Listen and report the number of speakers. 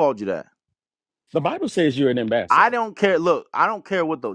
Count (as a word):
two